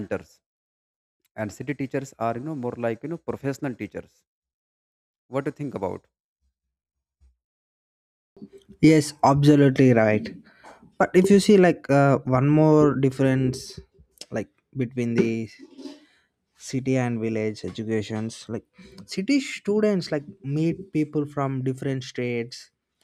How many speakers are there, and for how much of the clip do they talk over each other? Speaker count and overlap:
two, no overlap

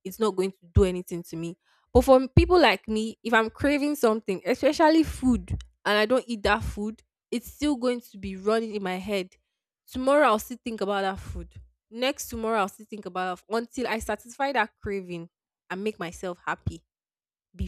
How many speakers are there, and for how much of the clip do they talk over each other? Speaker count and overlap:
one, no overlap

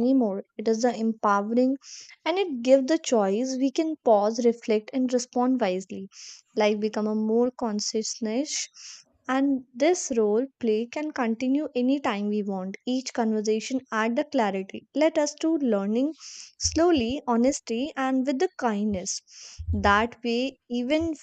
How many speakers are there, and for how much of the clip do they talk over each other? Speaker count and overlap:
one, no overlap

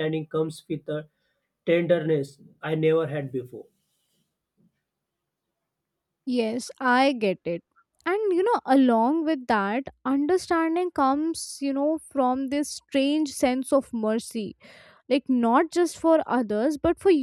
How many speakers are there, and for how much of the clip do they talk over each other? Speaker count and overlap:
two, no overlap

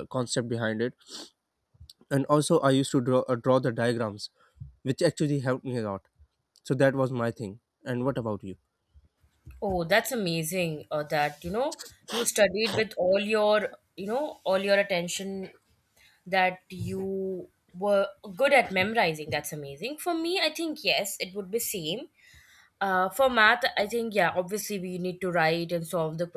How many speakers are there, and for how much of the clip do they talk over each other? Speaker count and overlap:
two, no overlap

